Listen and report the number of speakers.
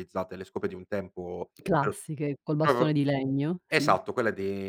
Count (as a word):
two